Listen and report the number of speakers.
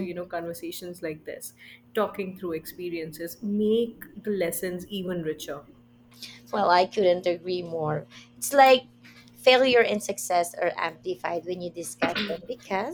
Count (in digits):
2